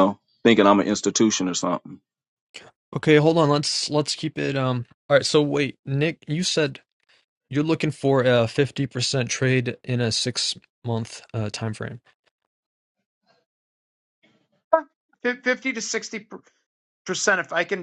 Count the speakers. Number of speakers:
three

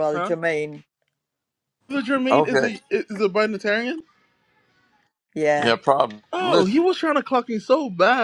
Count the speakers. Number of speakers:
three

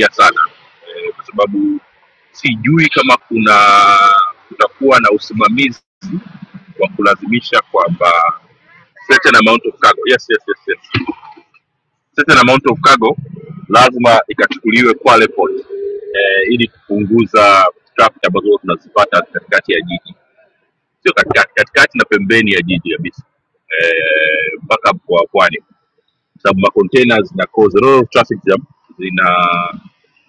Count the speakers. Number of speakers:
one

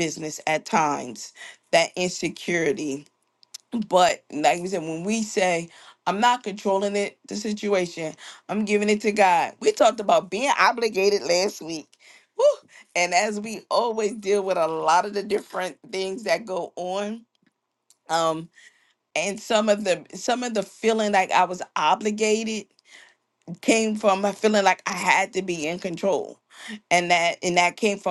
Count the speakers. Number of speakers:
one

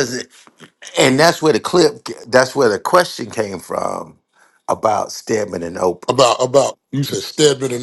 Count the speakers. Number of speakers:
two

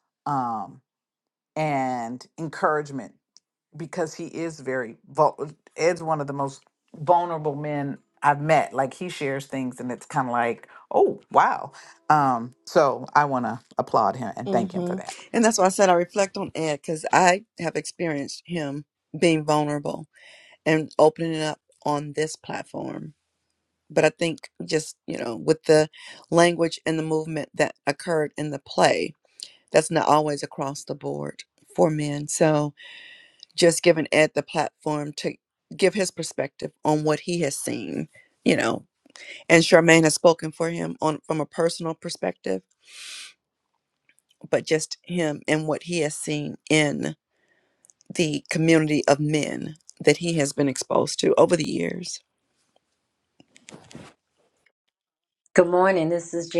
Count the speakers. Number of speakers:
three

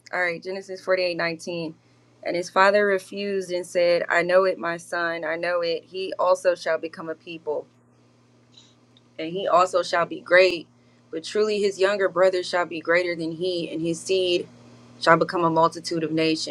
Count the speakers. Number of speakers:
one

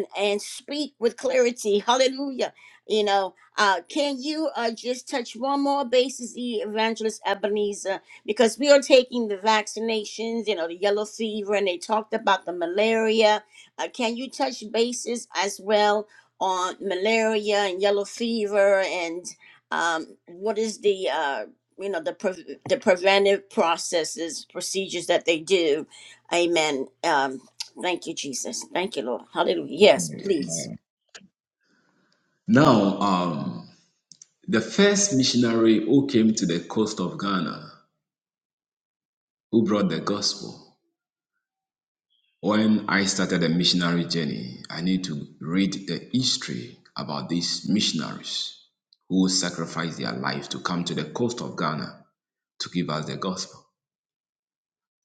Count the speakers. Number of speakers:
two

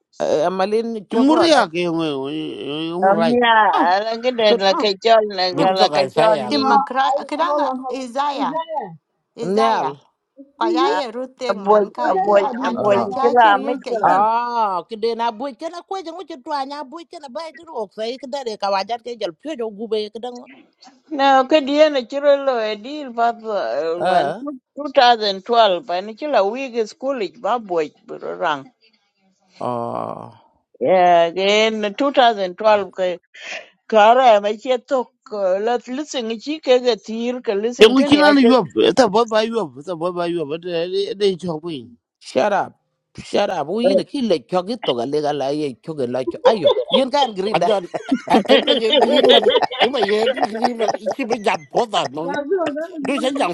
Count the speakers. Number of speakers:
six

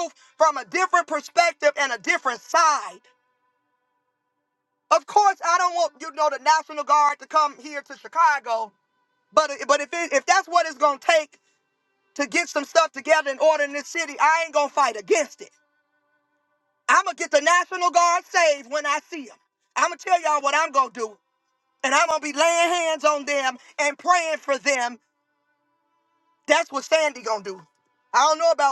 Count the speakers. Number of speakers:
one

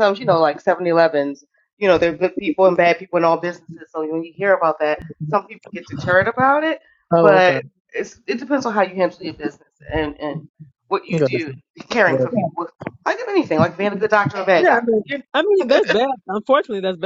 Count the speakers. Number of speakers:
two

